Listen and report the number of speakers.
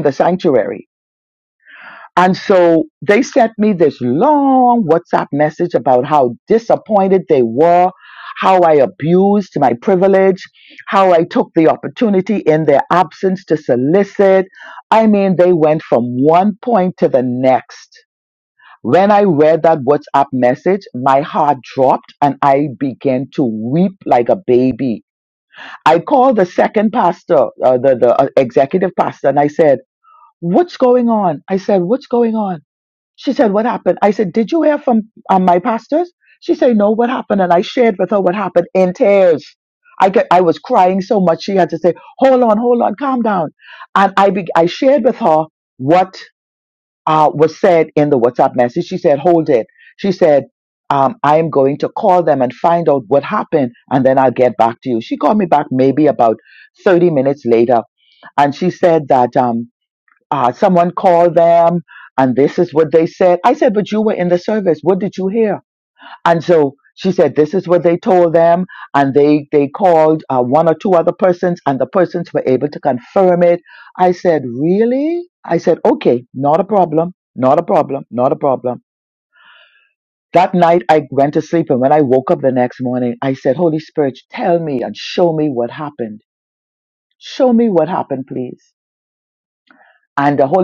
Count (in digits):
1